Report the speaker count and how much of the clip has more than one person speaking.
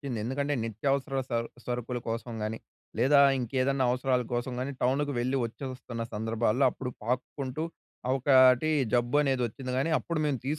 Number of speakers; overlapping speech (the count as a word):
one, no overlap